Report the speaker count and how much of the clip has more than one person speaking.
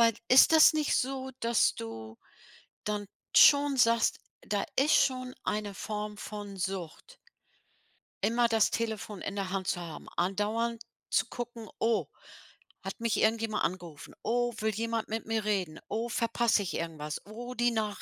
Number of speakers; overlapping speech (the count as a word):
one, no overlap